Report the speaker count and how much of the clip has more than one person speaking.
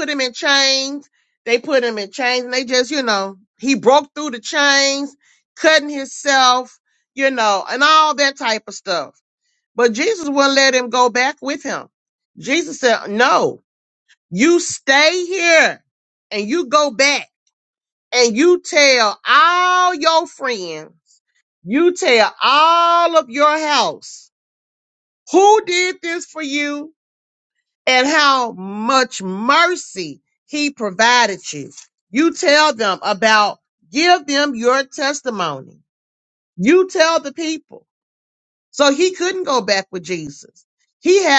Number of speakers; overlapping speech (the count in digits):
1, no overlap